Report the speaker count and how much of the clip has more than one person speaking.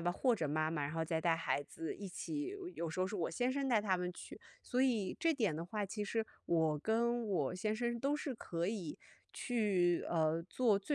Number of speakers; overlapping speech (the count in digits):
1, no overlap